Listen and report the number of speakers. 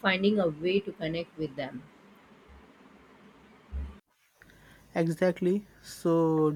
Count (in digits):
2